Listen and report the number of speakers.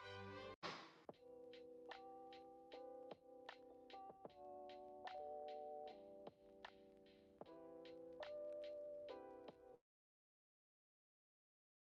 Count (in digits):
0